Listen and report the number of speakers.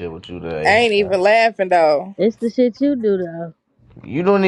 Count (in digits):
3